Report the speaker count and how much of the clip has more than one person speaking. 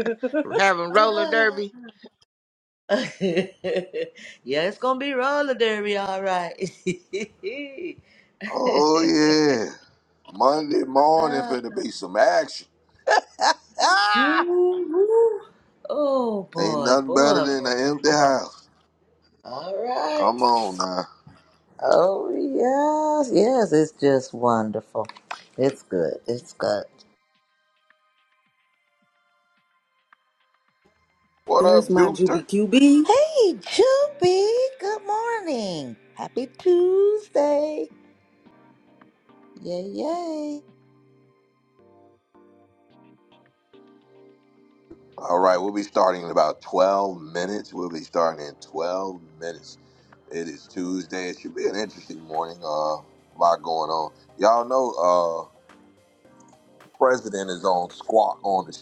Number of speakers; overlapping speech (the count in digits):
4, about 7%